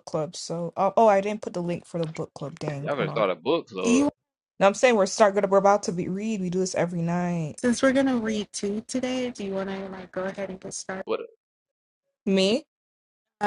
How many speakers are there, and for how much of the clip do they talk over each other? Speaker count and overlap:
3, about 5%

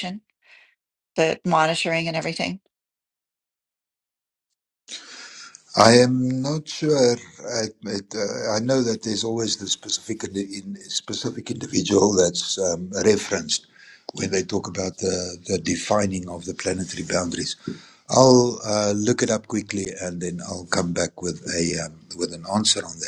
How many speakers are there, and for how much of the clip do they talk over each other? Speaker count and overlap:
2, no overlap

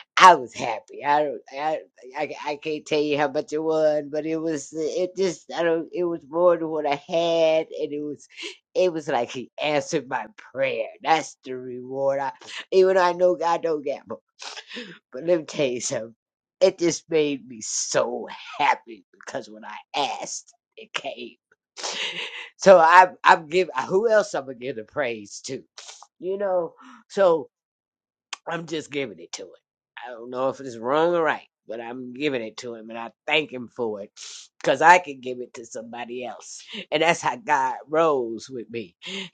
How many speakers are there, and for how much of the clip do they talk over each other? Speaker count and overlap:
1, no overlap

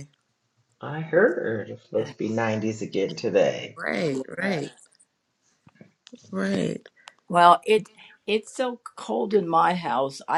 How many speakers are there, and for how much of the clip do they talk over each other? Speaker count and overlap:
3, about 5%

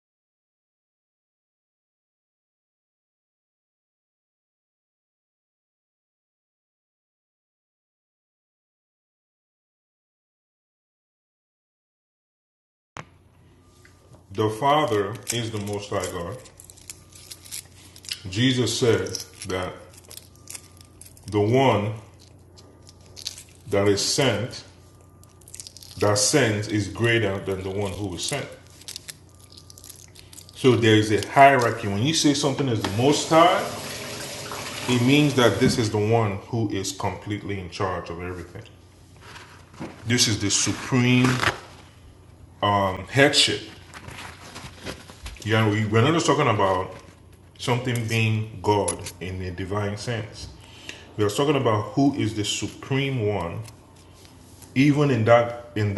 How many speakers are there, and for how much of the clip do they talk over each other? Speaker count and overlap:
1, no overlap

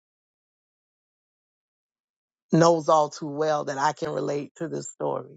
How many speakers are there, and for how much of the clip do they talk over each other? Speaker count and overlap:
1, no overlap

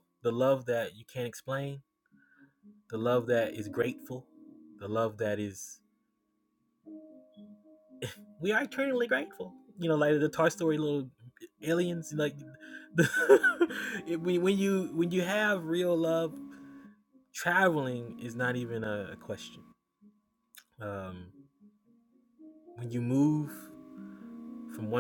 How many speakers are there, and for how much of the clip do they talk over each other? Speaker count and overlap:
1, no overlap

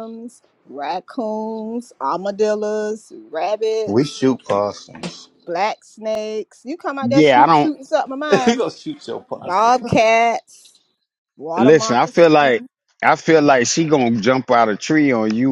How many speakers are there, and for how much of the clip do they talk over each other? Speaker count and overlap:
3, about 15%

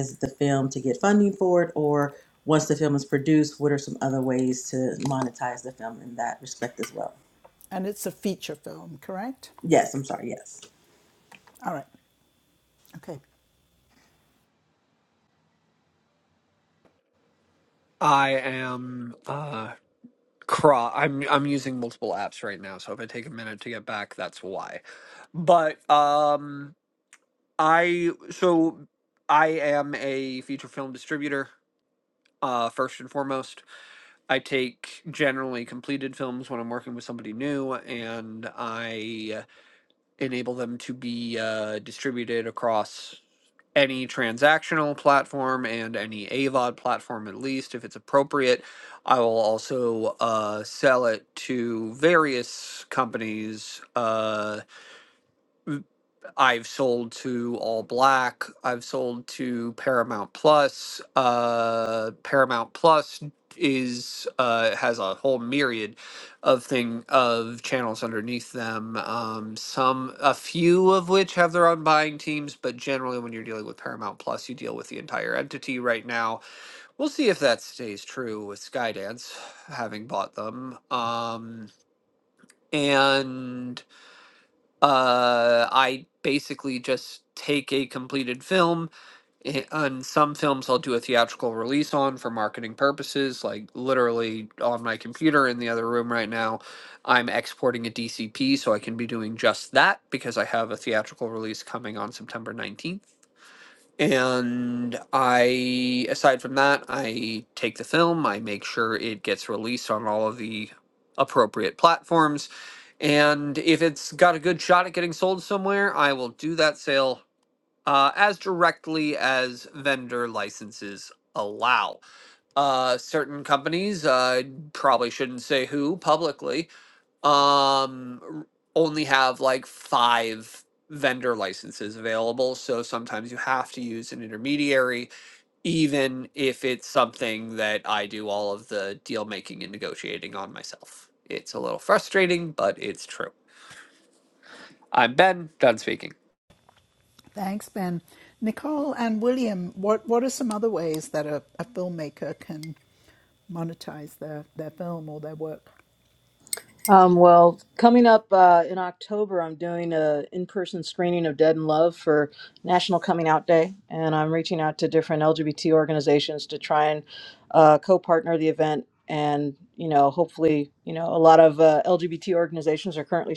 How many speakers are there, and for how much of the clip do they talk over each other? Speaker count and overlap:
4, no overlap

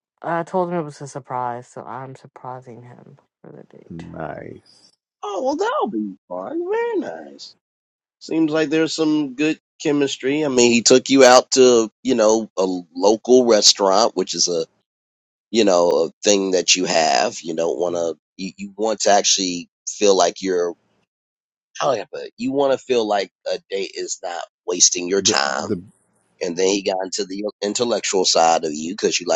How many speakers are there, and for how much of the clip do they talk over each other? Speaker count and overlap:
3, about 2%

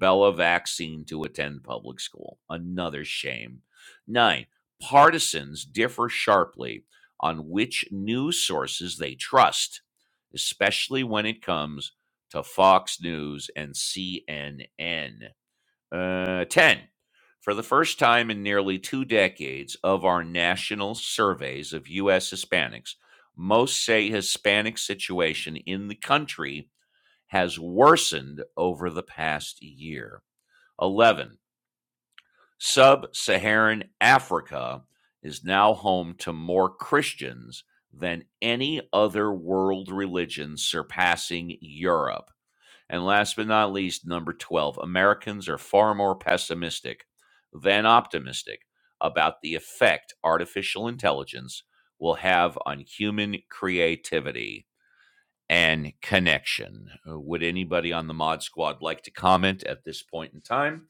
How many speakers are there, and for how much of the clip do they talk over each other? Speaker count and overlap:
1, no overlap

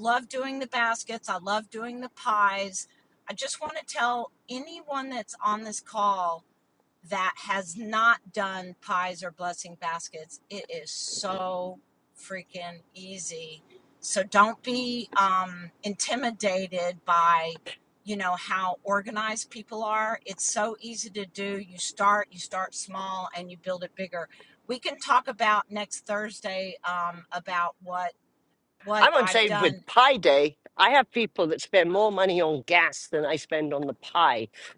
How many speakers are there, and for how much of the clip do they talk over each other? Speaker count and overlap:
2, about 2%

